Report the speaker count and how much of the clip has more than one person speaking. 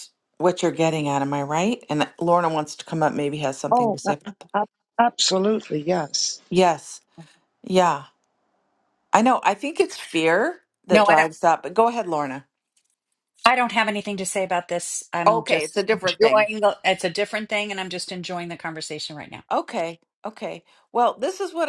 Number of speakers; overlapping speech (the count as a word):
three, about 9%